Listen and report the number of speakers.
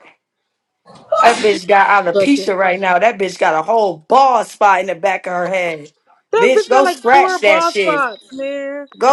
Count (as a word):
two